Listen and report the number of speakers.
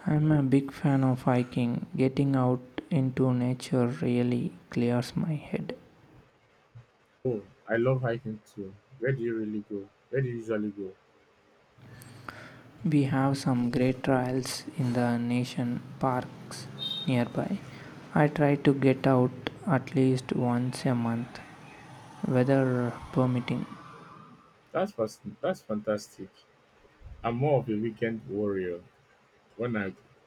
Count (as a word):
two